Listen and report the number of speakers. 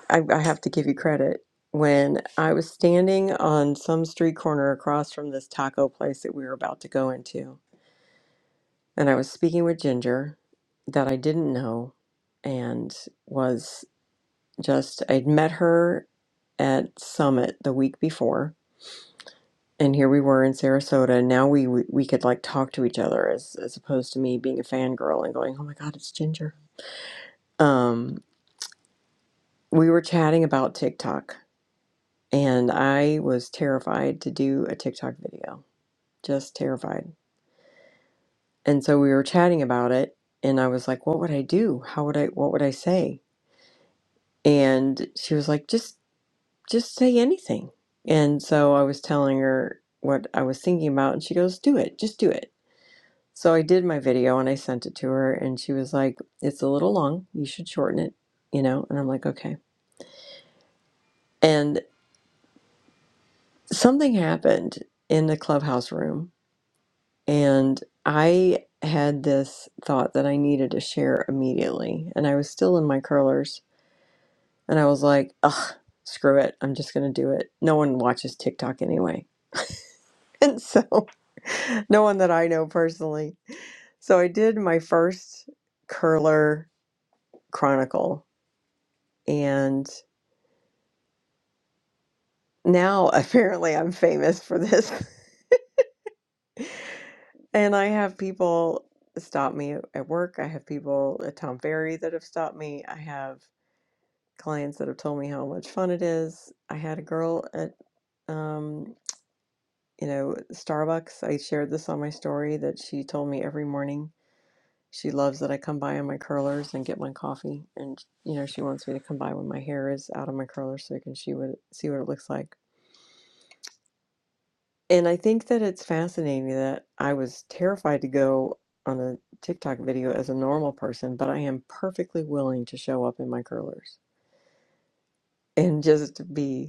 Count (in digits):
1